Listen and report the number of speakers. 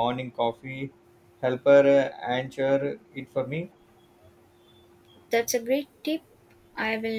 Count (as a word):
two